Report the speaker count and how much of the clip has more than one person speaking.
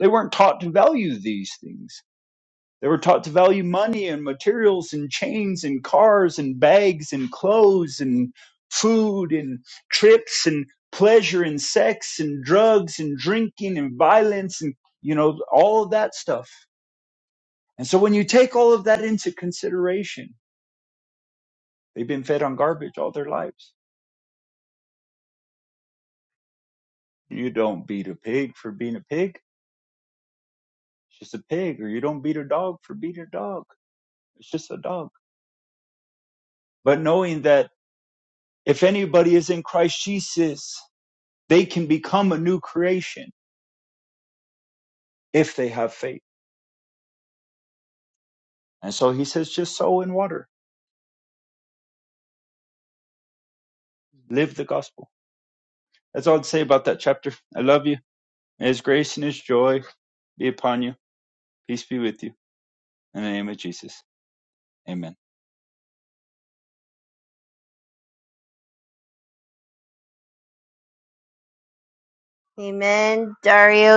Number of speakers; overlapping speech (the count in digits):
2, no overlap